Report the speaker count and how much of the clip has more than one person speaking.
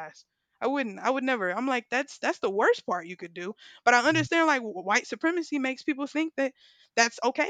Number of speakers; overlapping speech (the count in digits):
1, no overlap